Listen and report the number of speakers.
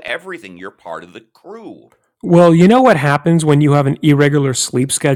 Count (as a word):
two